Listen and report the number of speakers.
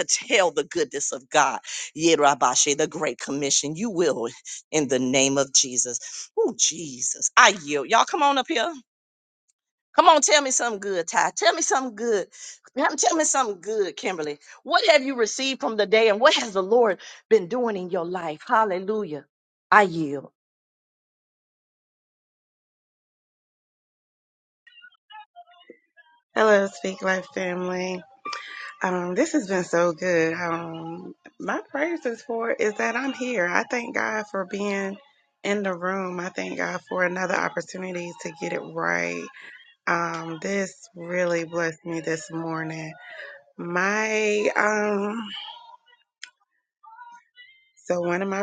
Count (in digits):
2